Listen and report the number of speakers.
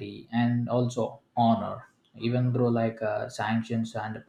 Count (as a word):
one